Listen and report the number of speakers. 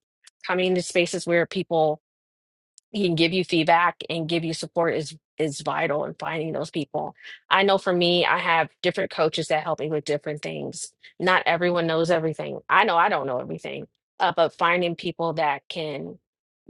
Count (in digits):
1